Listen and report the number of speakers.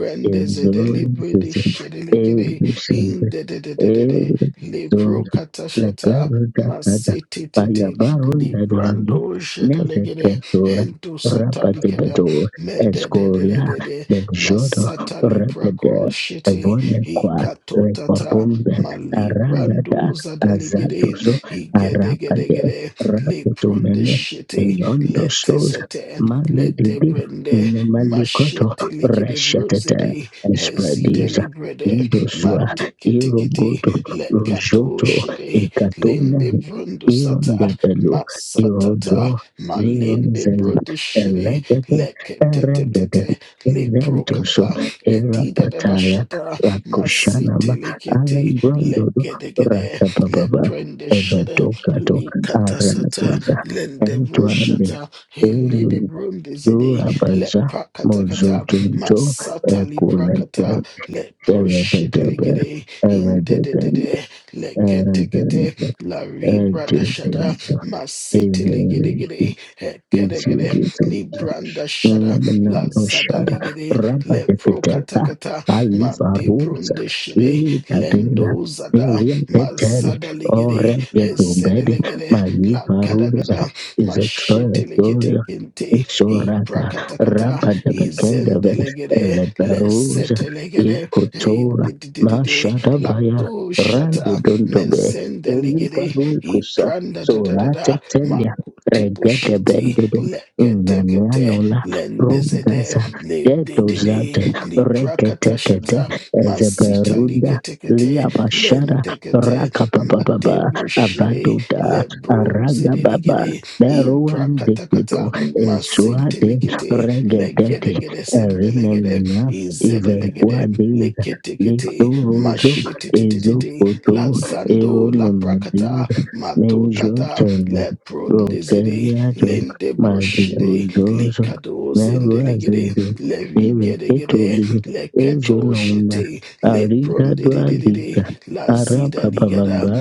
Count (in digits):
2